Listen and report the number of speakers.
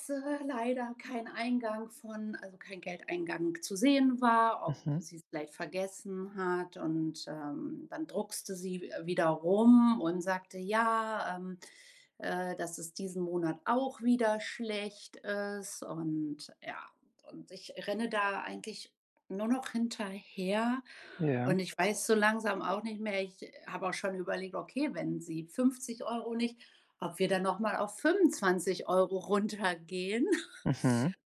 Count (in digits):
2